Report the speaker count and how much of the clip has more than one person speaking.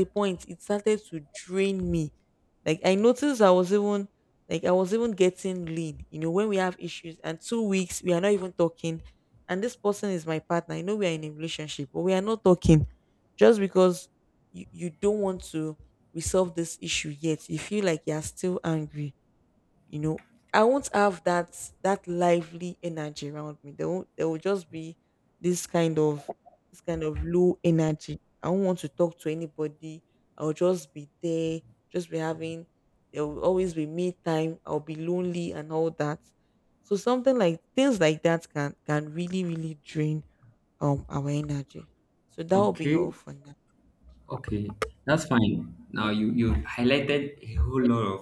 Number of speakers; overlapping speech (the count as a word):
two, about 1%